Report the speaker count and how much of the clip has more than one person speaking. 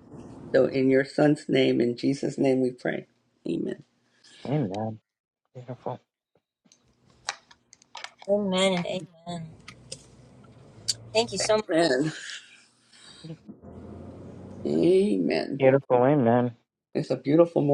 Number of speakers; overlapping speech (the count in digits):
3, no overlap